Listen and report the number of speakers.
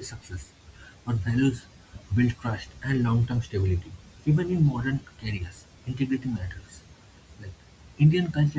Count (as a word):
one